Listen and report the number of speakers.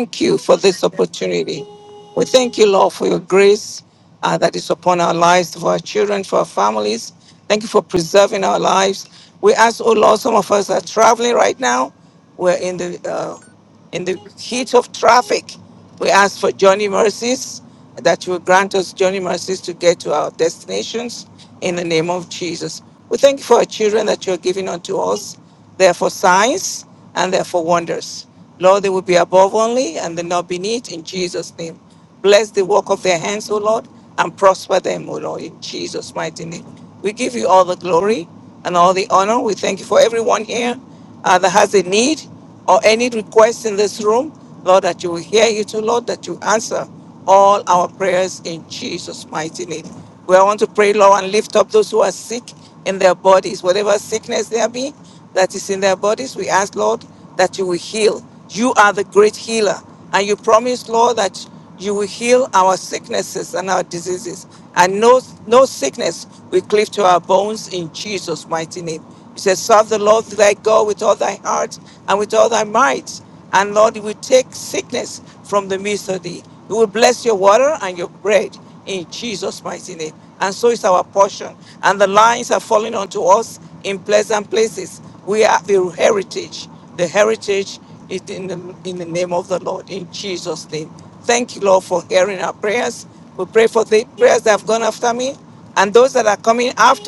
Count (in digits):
1